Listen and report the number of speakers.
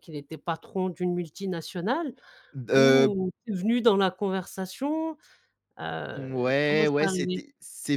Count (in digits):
2